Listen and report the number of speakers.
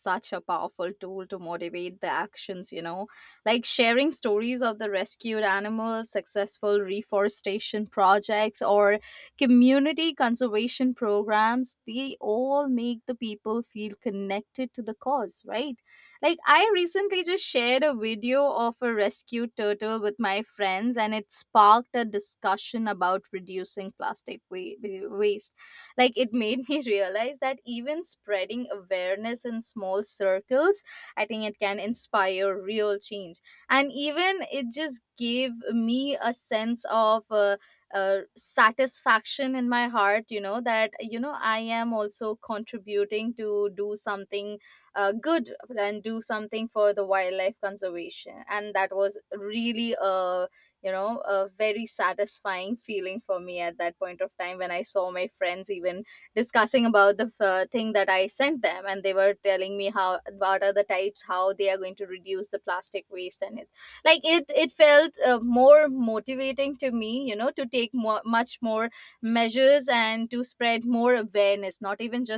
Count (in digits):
1